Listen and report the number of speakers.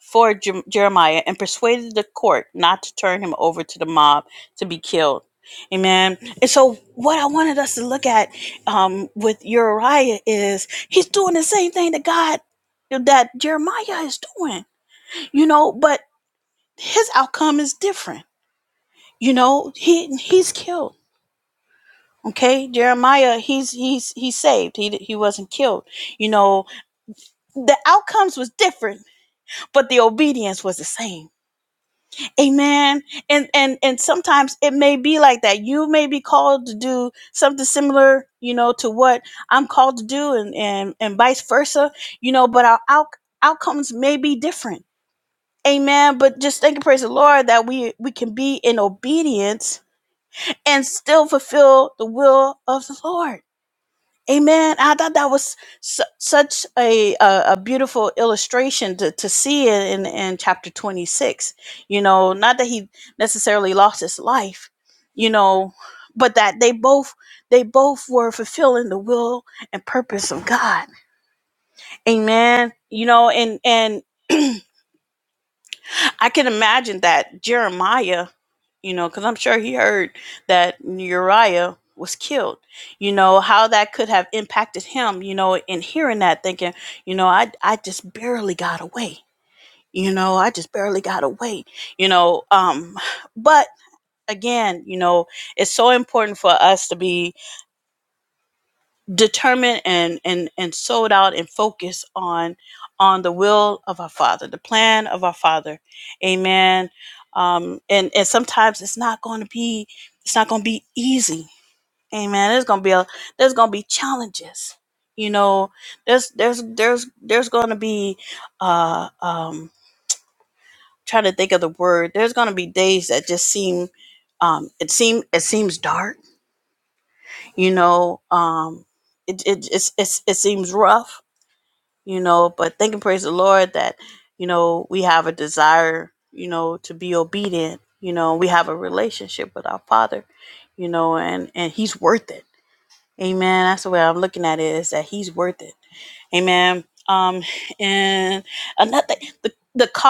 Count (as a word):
one